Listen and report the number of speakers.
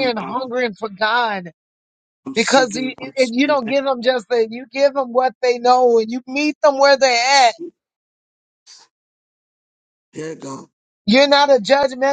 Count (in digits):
2